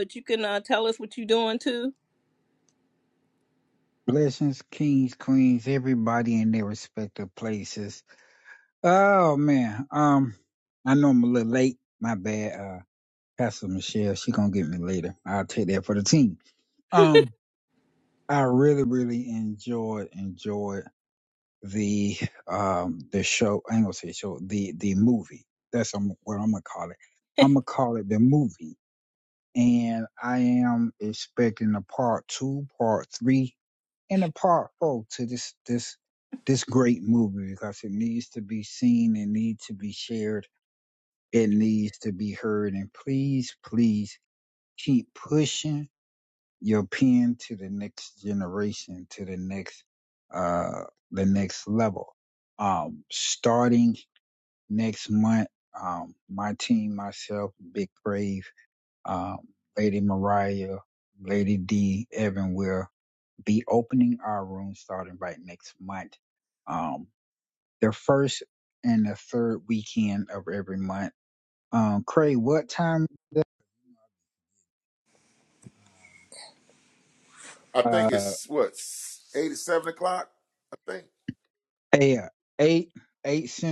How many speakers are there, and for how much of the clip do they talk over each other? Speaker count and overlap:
3, about 1%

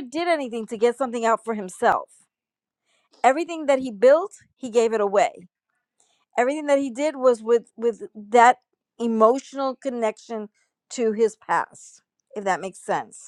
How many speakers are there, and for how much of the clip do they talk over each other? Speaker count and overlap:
1, no overlap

